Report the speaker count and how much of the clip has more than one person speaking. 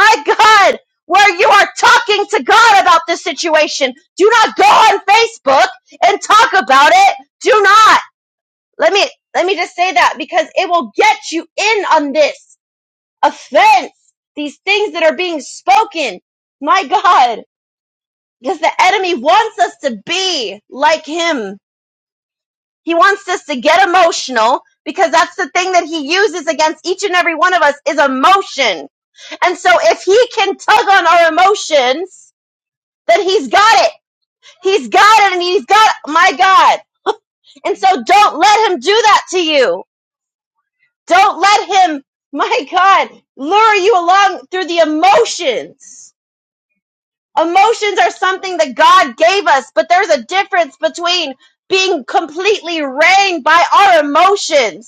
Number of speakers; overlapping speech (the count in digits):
1, no overlap